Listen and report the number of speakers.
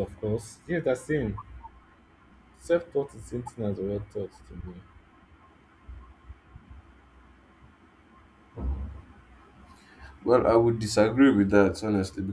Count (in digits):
2